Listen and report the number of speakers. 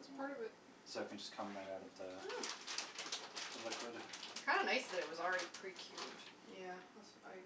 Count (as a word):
three